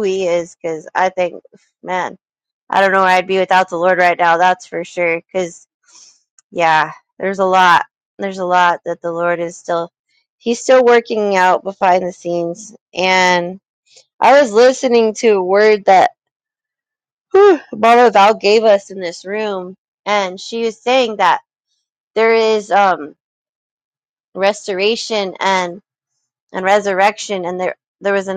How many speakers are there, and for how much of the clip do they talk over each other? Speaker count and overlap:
1, no overlap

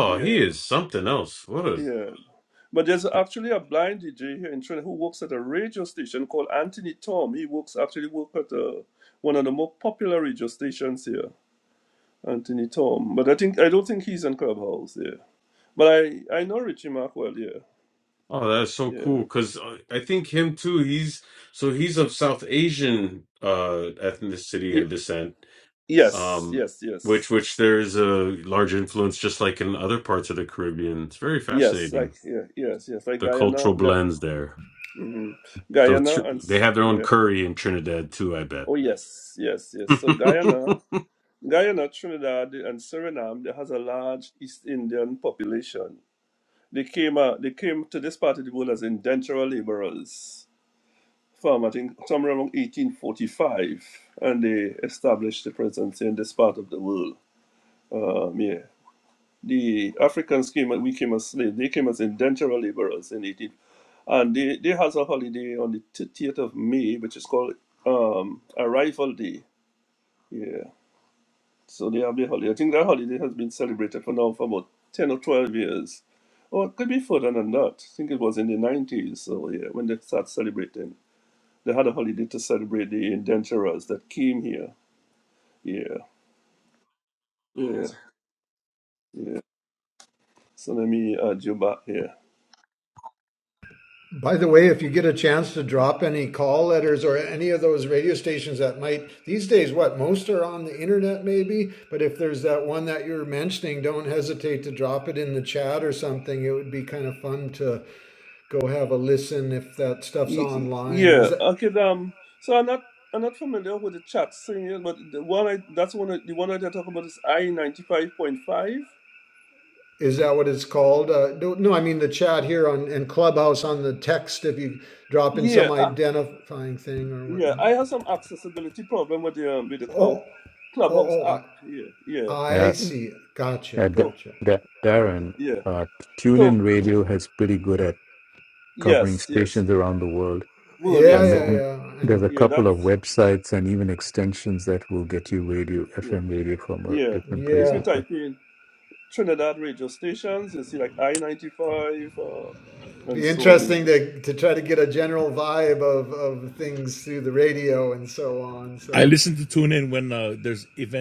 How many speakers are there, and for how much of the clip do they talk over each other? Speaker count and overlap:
5, about 7%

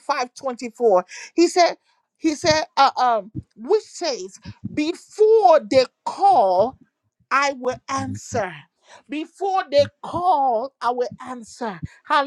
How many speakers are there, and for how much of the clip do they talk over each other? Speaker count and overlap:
1, no overlap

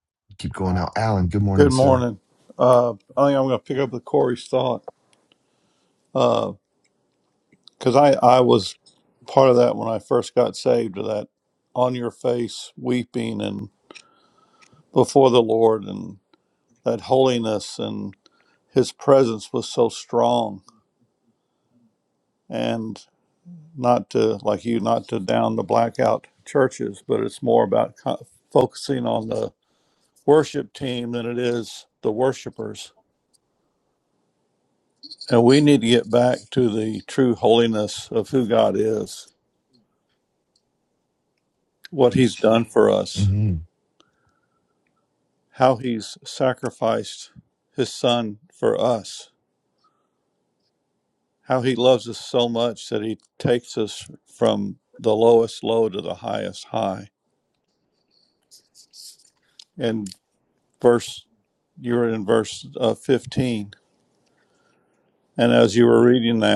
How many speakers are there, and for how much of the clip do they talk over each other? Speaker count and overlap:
2, about 1%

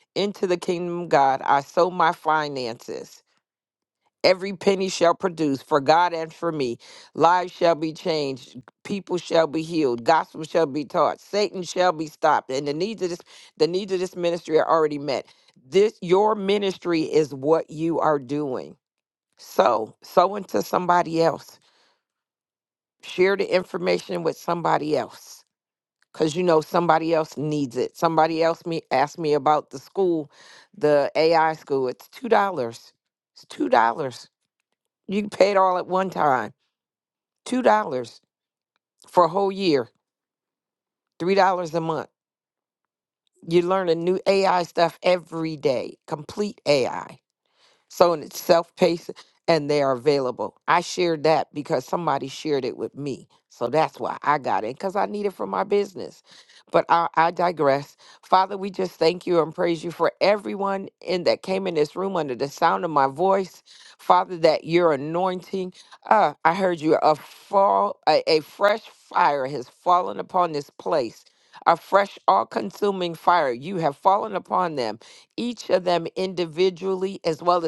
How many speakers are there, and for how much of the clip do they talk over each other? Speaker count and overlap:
1, no overlap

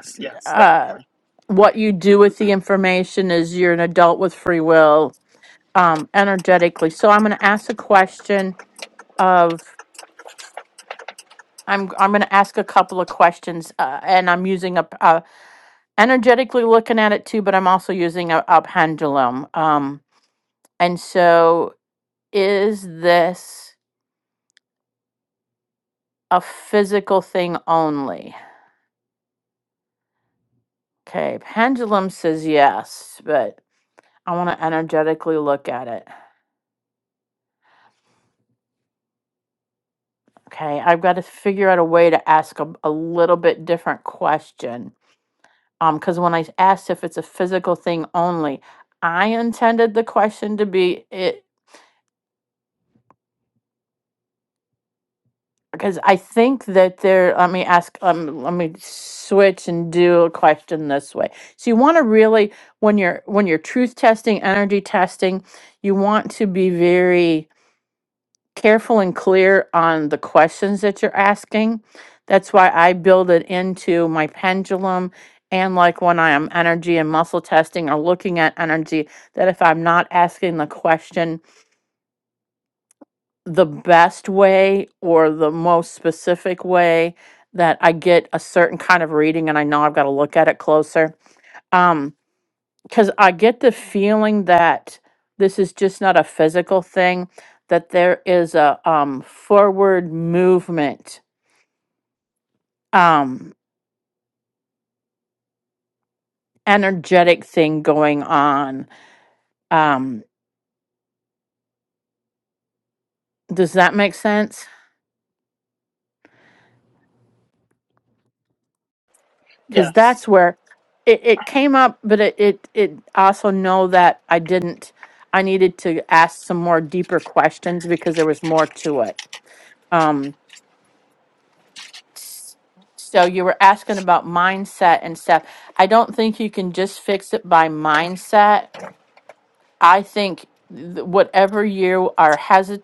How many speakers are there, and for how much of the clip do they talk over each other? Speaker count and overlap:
2, about 1%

